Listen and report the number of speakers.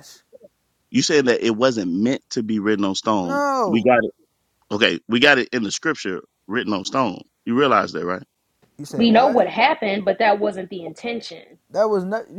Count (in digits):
3